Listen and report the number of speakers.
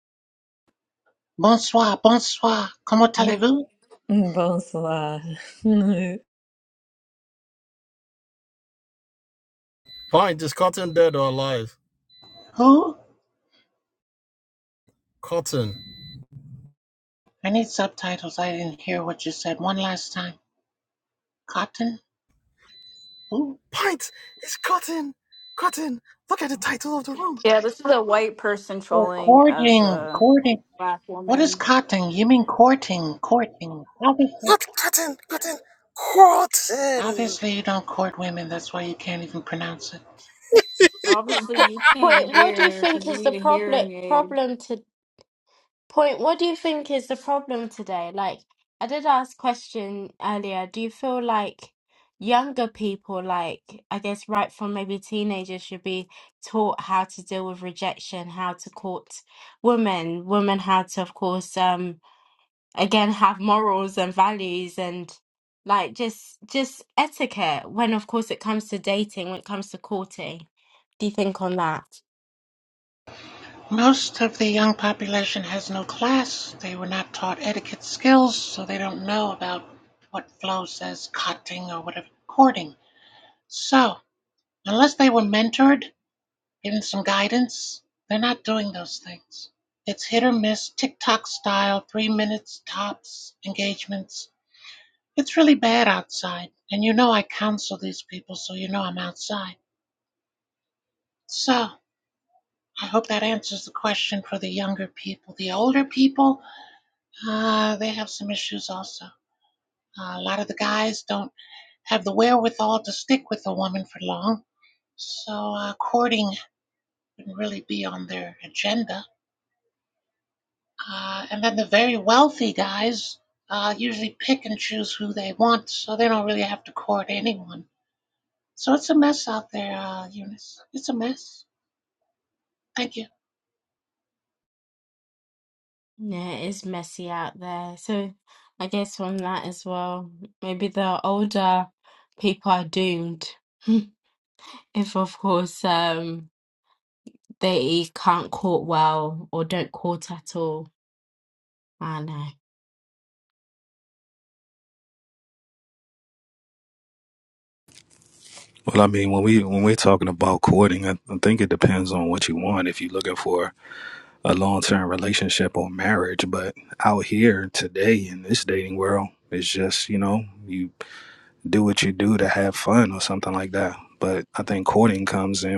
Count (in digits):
6